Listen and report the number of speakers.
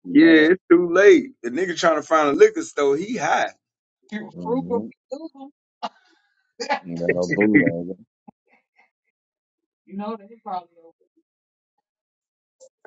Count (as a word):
three